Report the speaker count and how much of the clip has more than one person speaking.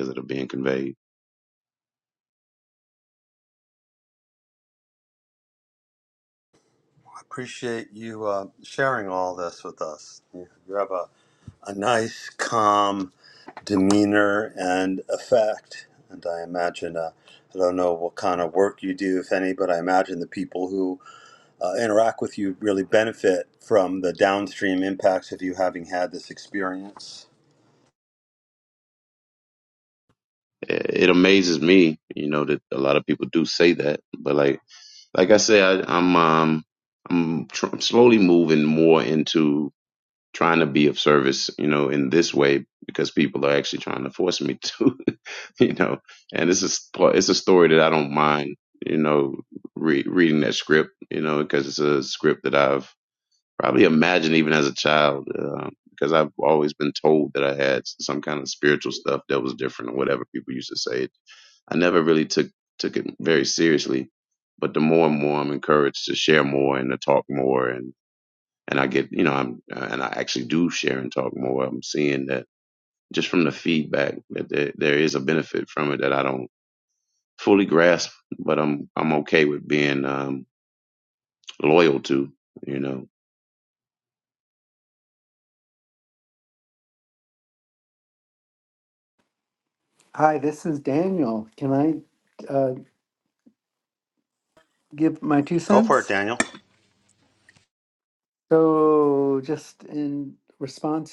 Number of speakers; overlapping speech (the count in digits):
3, under 1%